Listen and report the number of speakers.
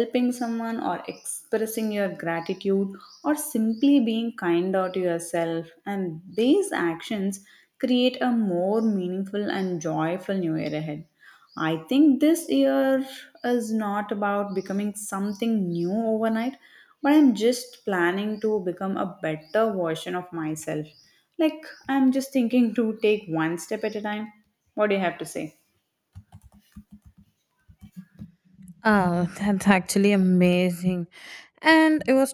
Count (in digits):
2